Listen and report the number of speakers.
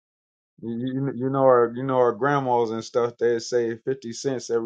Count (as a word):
one